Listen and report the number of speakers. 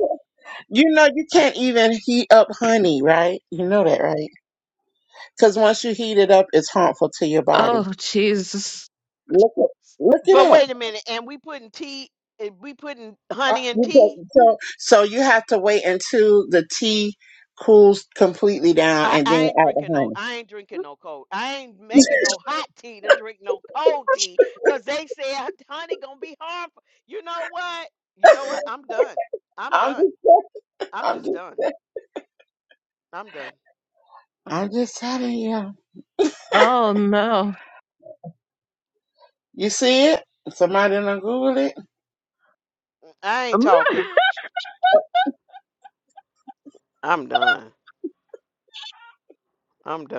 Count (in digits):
3